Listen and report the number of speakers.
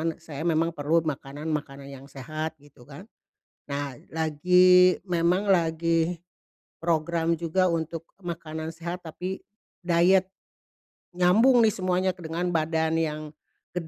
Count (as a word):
one